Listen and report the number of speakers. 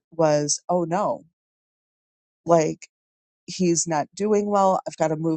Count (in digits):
1